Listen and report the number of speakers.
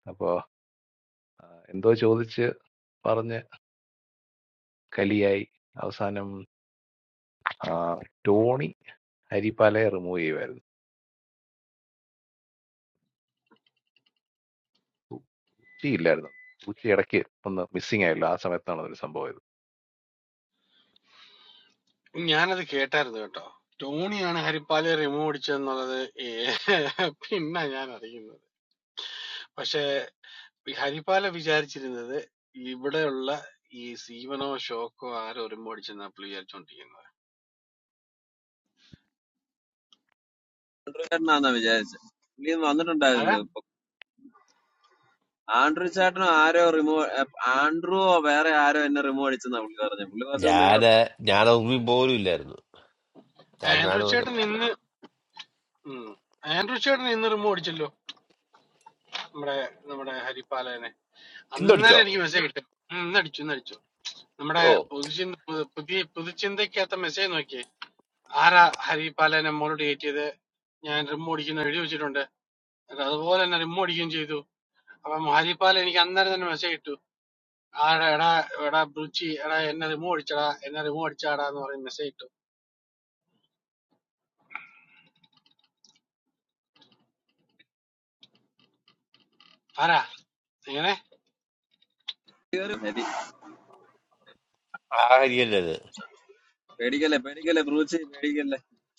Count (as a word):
four